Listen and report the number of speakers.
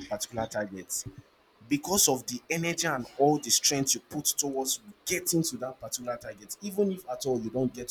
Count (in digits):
1